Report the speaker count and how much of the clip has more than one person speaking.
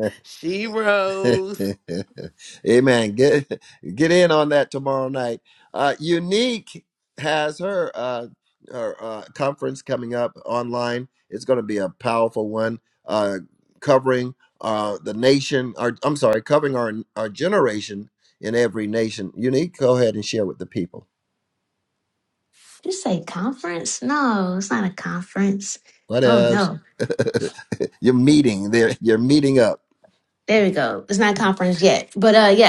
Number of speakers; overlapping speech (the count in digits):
3, about 1%